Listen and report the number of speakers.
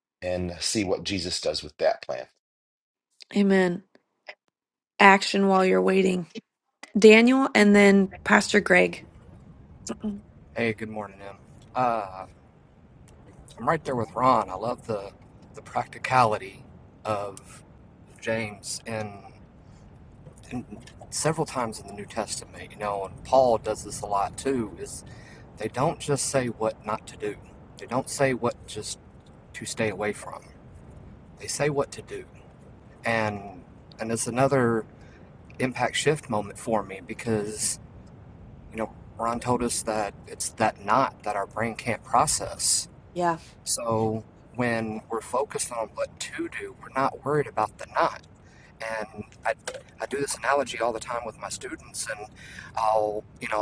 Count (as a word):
three